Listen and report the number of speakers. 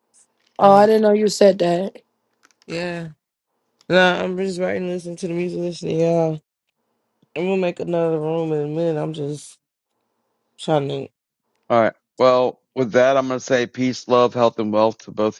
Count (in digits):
3